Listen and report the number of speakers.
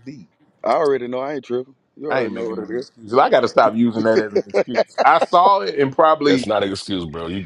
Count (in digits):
3